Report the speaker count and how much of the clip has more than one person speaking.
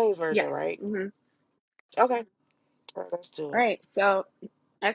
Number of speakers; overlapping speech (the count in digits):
2, about 11%